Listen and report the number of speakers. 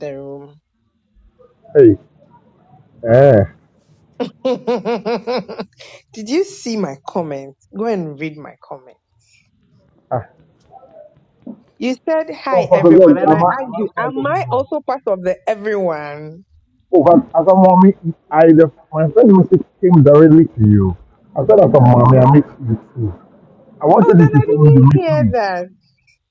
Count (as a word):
two